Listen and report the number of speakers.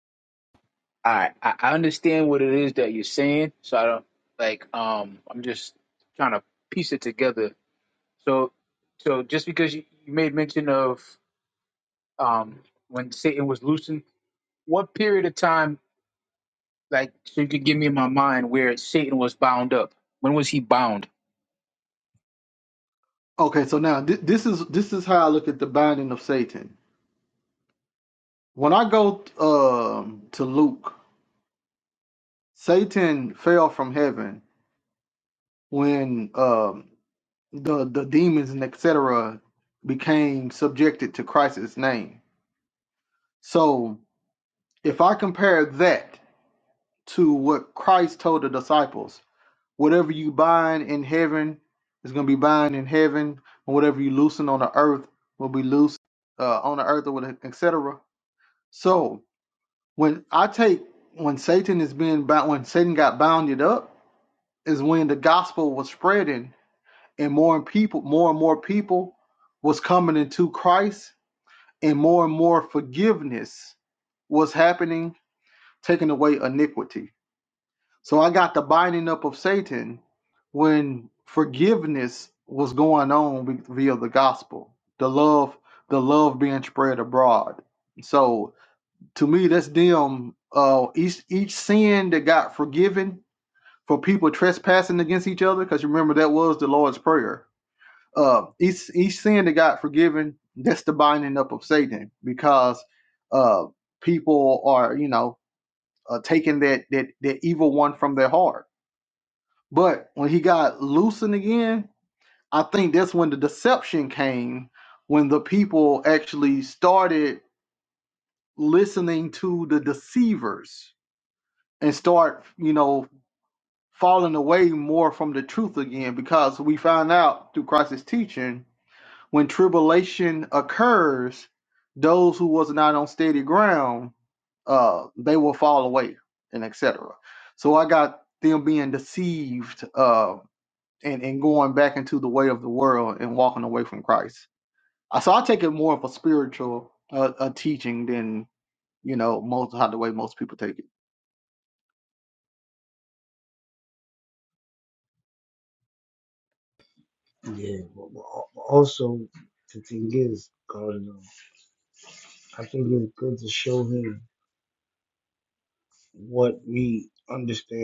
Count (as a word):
three